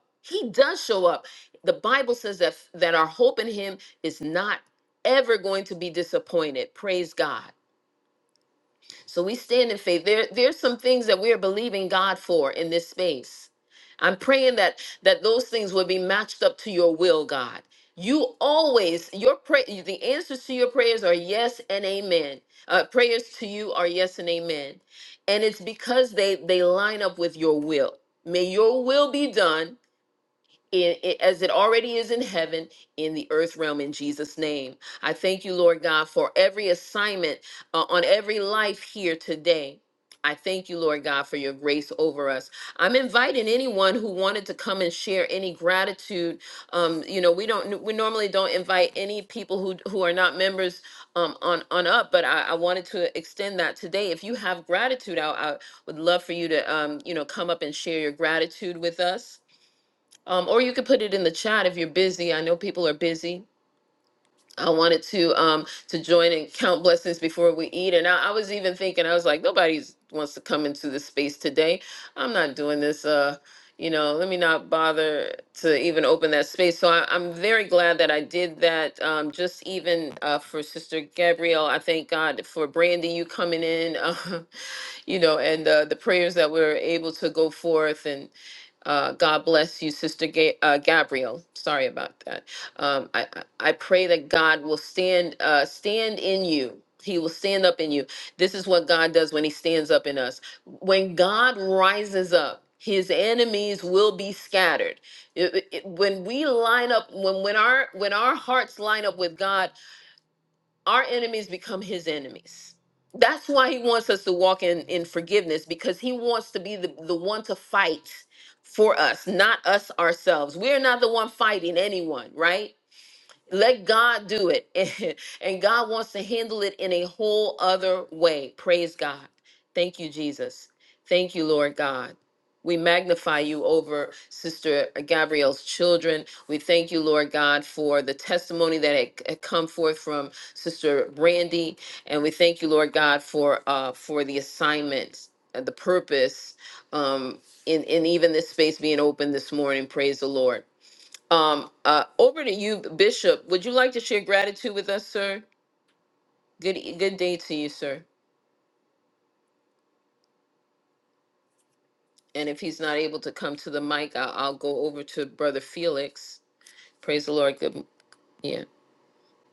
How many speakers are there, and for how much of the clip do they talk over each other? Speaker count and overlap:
1, no overlap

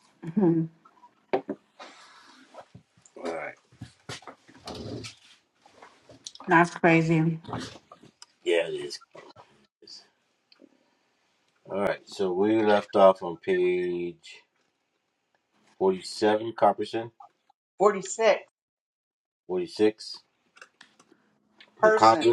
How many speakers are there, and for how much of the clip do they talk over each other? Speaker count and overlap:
3, about 2%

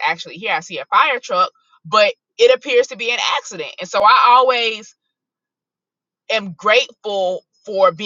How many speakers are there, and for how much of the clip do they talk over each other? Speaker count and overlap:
1, no overlap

